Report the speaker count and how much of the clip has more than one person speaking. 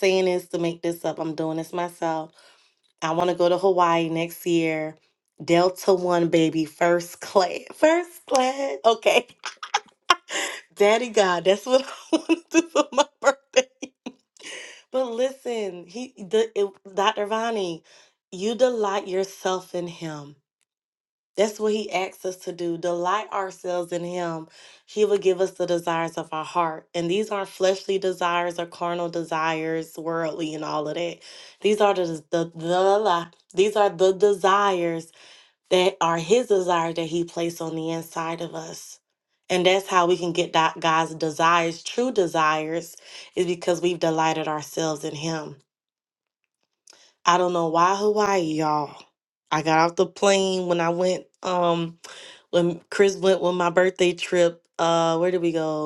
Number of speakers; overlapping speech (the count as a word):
one, no overlap